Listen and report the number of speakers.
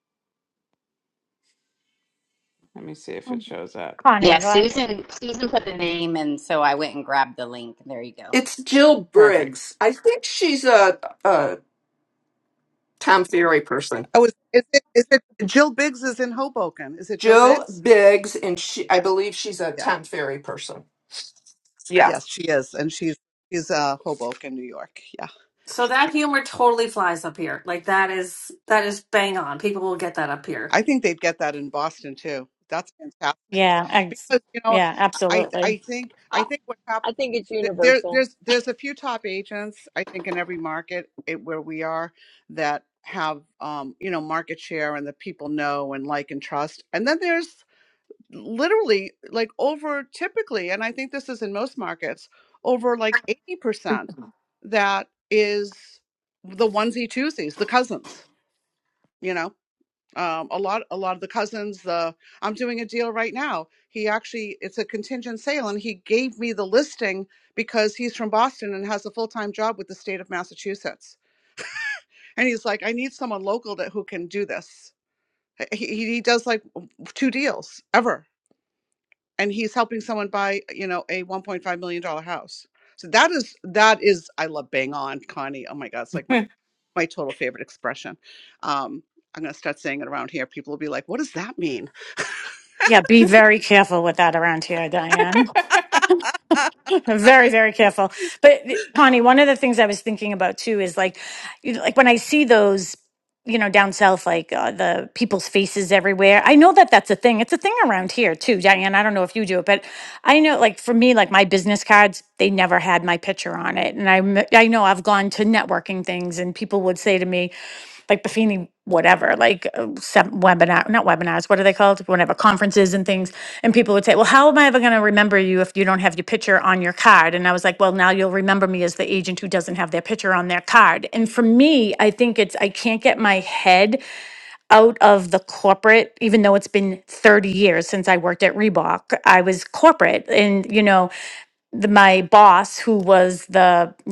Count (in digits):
7